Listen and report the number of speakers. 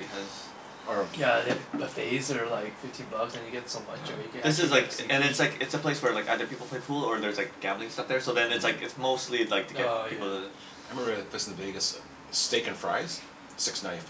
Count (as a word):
three